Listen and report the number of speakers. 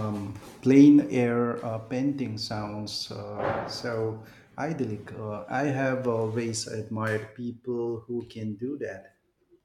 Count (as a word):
one